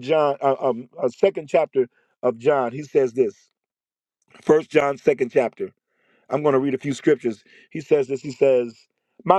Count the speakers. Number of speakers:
1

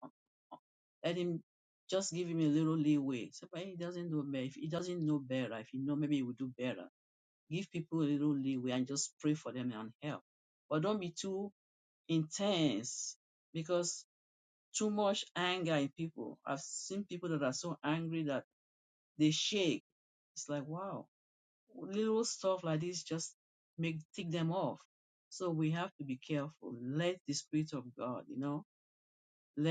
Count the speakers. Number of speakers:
1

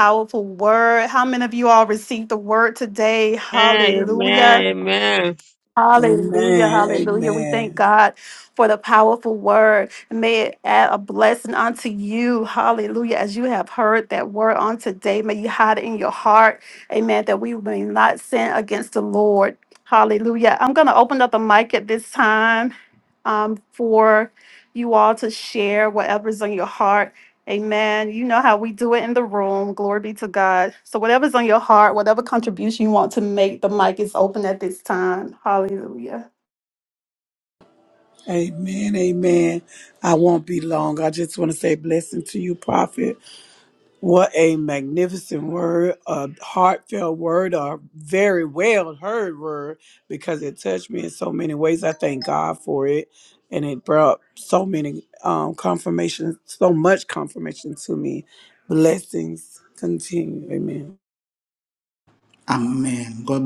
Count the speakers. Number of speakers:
4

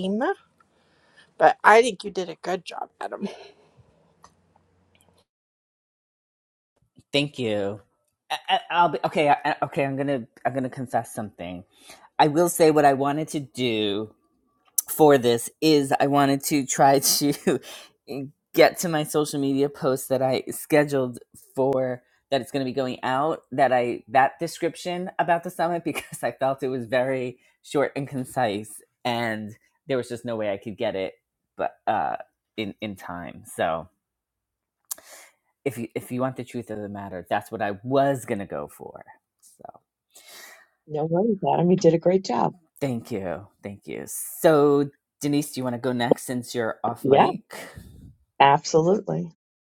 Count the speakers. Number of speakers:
3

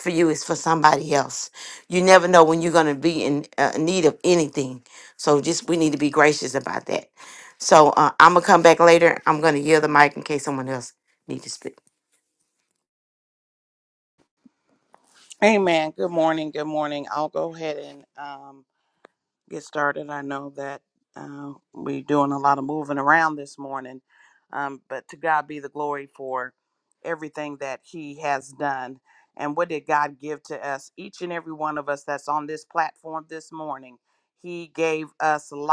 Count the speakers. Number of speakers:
2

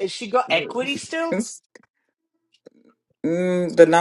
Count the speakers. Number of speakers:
2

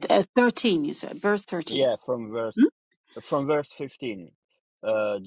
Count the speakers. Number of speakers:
2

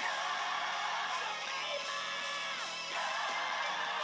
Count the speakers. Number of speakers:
0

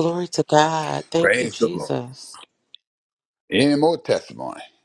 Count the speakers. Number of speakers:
2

